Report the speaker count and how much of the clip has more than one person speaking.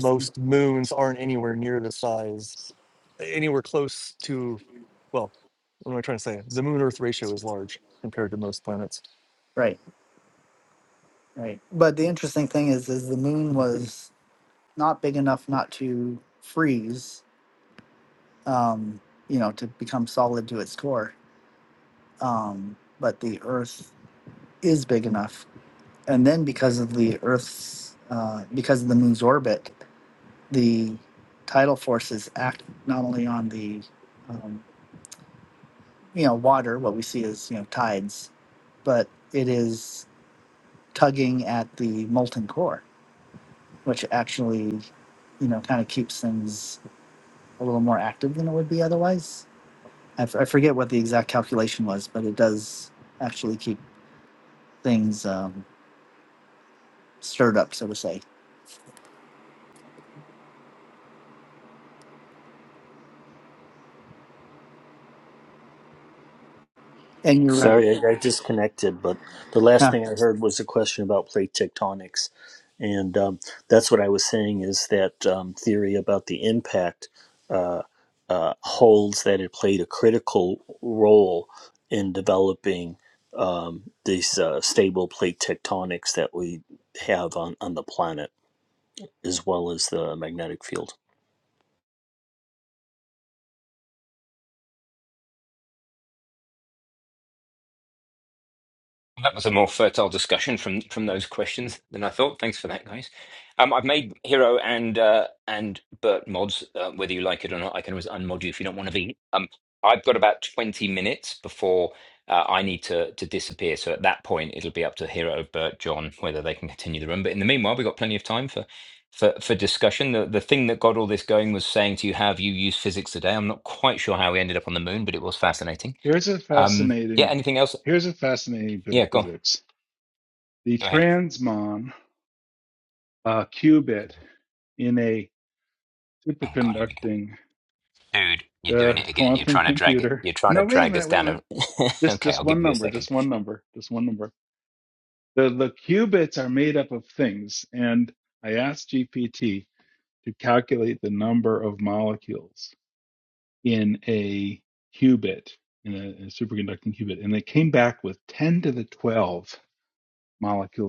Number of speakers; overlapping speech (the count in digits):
5, about 4%